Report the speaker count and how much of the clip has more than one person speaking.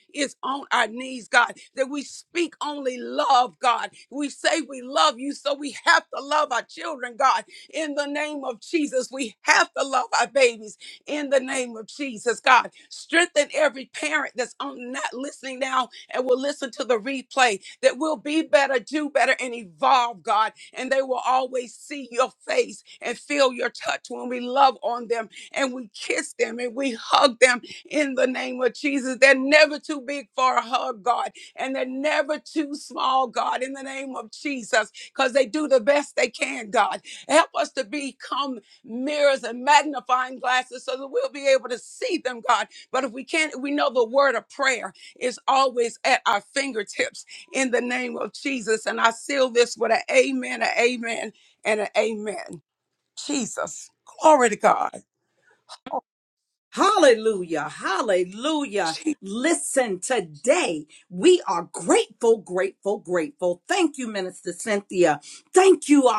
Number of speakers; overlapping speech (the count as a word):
two, no overlap